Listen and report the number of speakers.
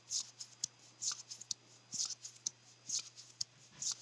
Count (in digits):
0